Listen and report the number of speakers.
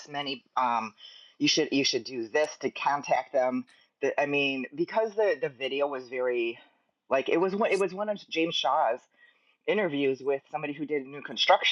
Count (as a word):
one